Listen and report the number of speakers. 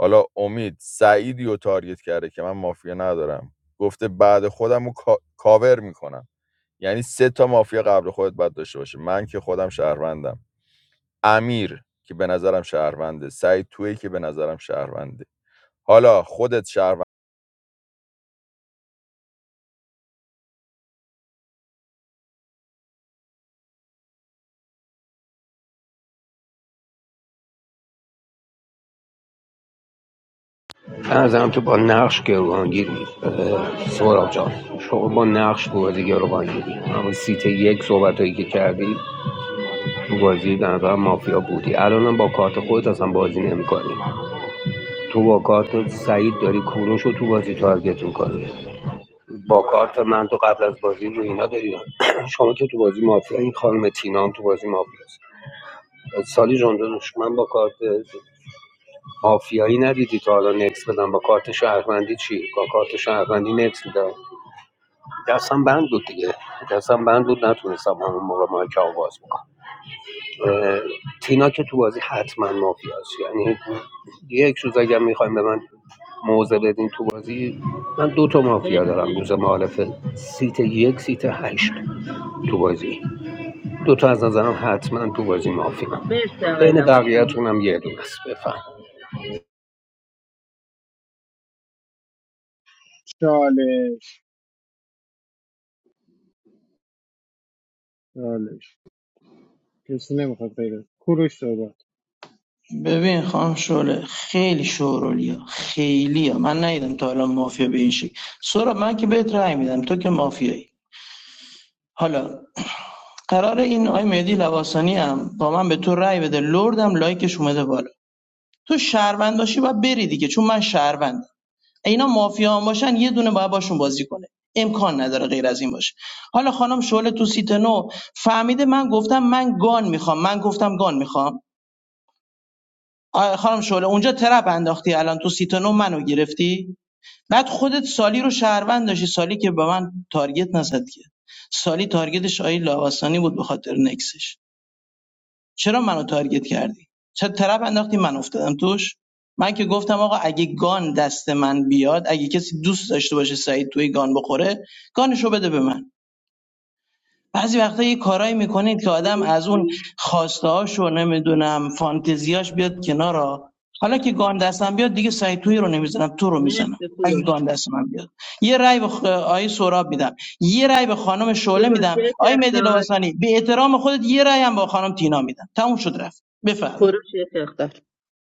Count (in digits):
5